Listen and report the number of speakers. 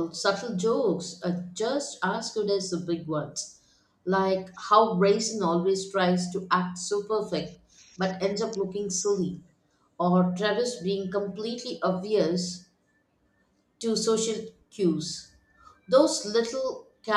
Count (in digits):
1